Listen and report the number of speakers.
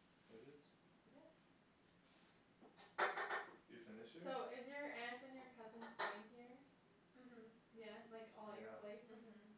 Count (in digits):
3